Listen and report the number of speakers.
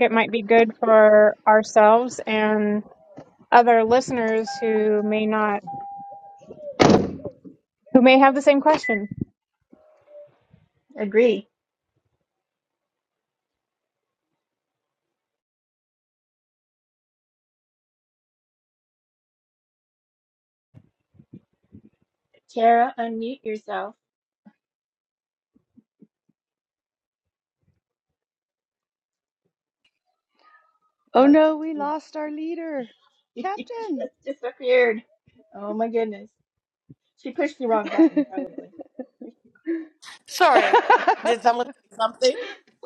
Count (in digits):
4